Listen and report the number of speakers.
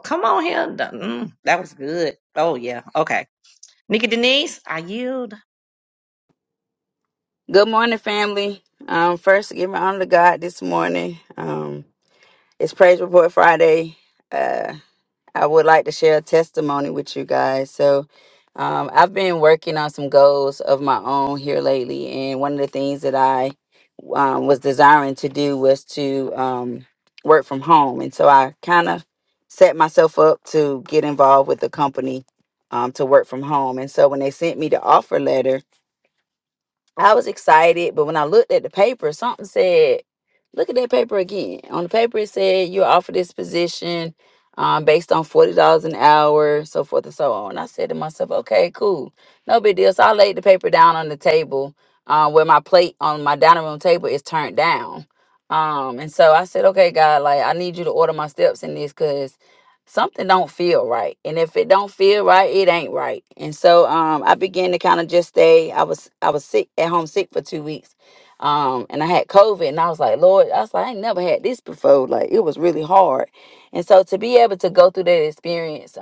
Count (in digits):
2